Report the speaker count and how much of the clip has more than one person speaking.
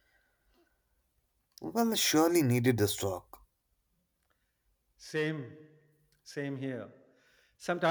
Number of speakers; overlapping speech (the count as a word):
two, no overlap